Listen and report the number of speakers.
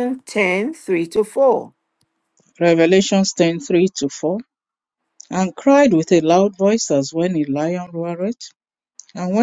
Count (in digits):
2